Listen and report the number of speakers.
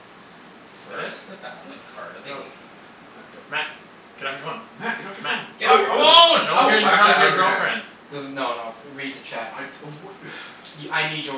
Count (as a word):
four